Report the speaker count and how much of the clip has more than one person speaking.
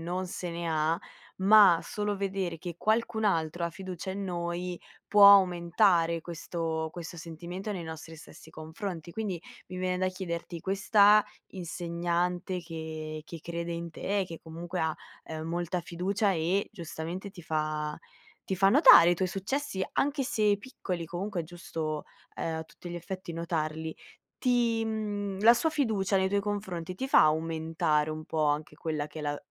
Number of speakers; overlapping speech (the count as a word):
one, no overlap